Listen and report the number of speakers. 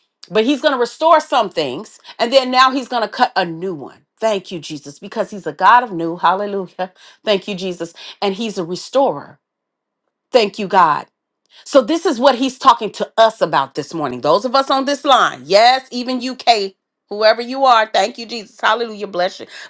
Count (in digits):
1